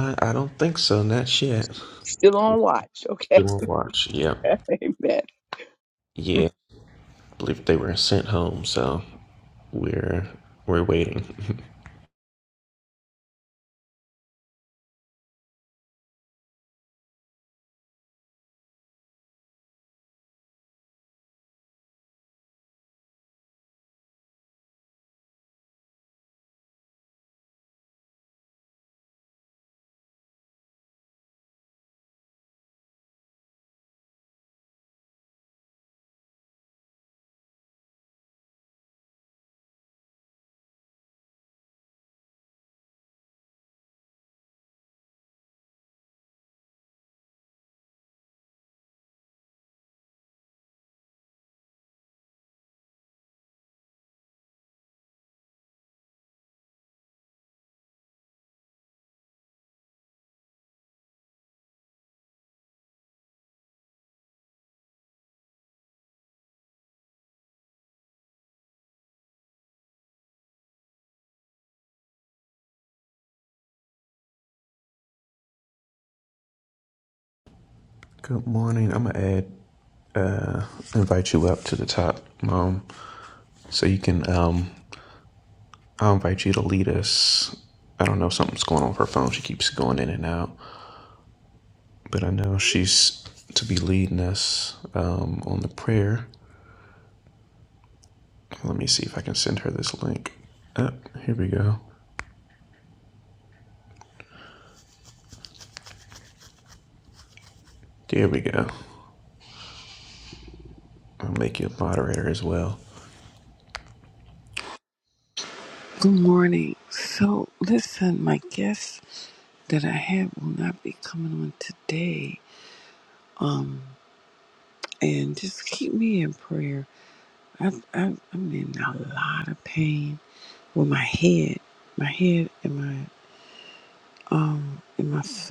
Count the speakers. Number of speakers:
3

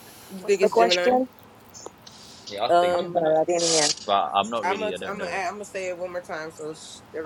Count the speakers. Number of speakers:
3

